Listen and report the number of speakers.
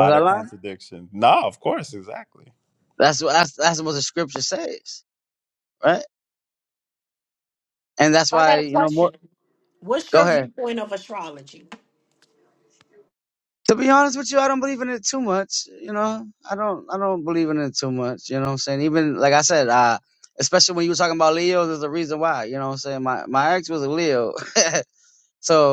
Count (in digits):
3